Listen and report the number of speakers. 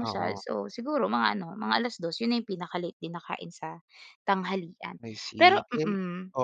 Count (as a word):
two